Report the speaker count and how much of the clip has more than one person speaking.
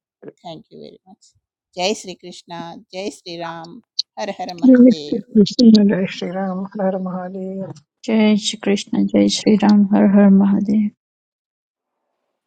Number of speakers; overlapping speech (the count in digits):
3, about 1%